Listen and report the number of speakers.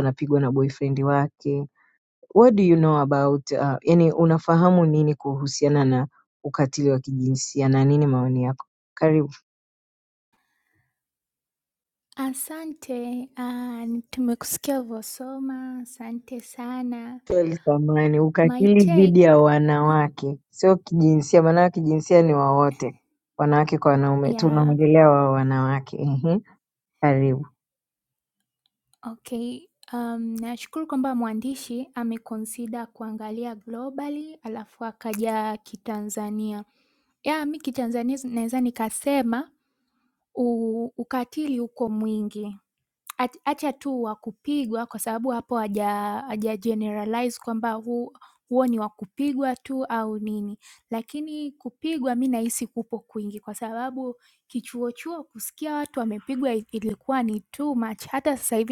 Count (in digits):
2